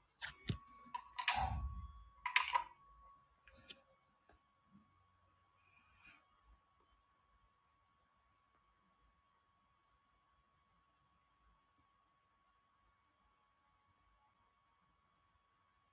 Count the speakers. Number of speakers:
0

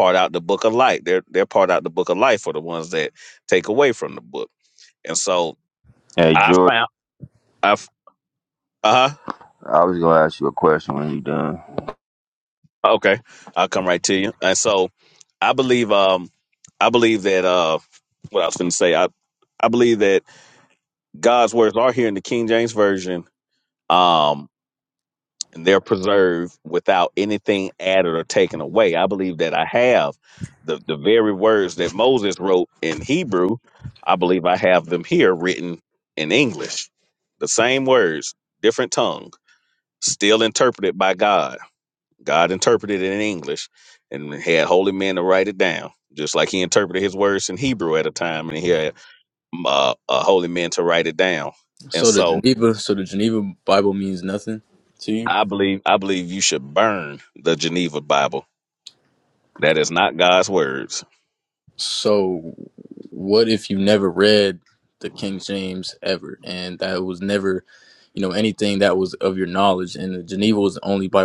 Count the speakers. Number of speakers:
3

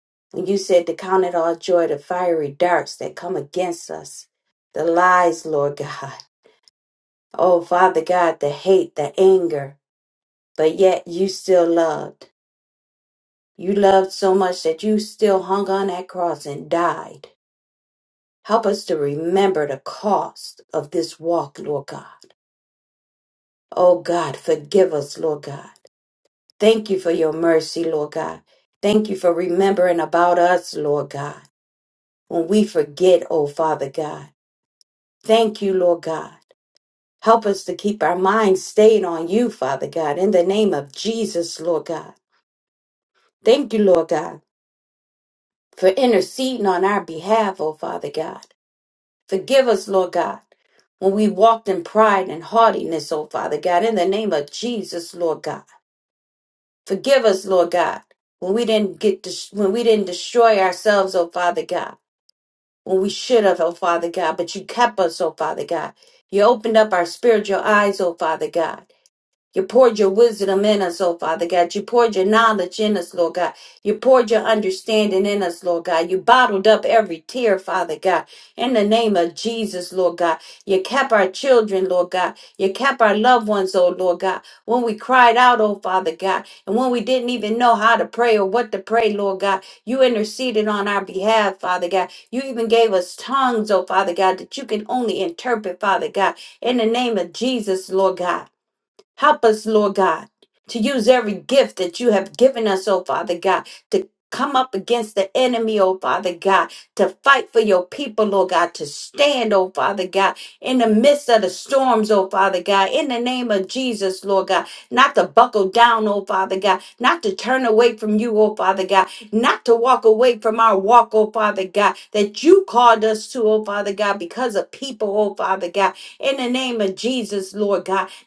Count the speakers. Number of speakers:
1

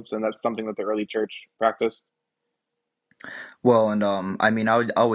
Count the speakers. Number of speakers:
2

